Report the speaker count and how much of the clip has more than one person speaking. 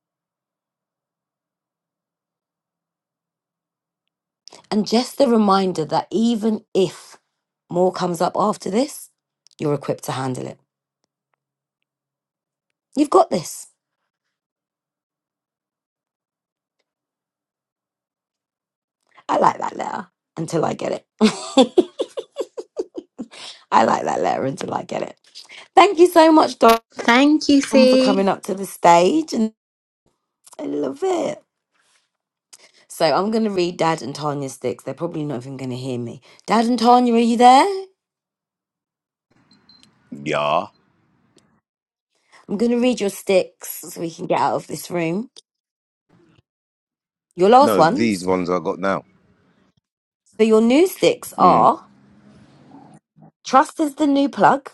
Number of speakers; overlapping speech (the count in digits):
3, about 2%